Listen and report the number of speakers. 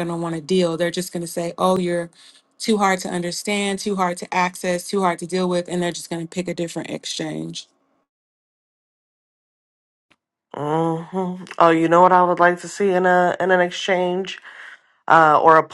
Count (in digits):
2